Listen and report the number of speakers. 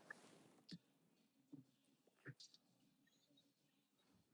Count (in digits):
0